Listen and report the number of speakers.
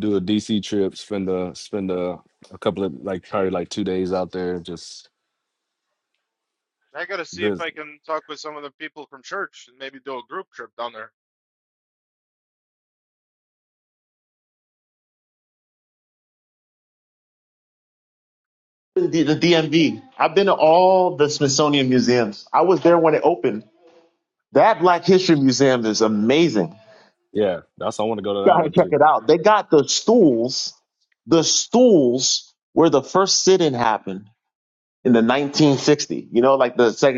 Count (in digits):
3